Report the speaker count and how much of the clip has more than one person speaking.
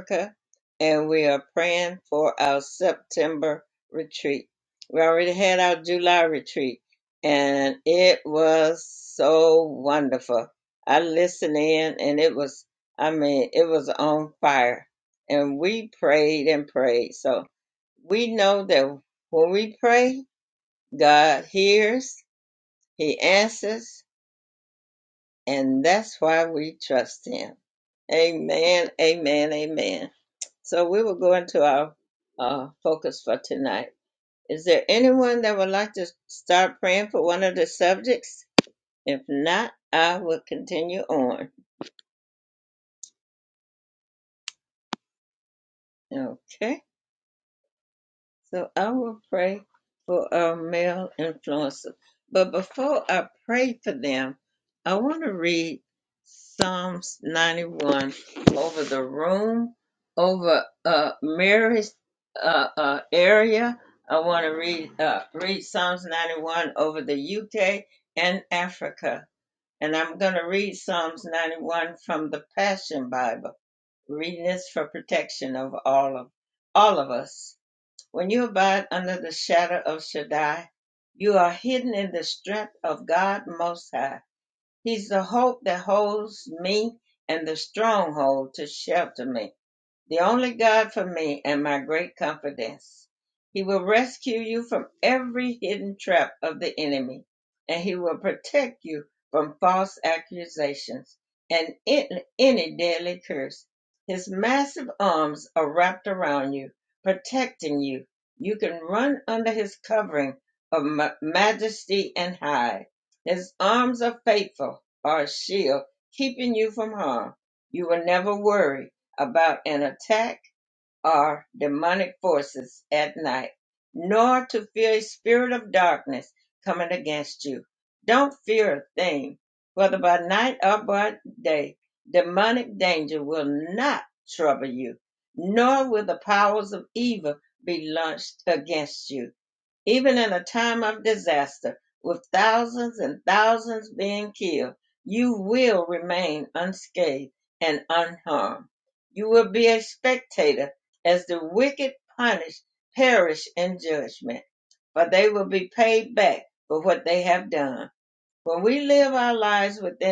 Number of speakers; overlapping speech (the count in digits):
1, no overlap